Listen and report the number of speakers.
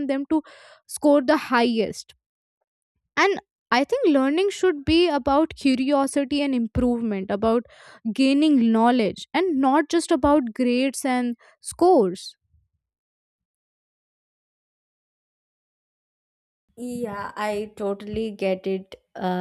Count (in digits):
2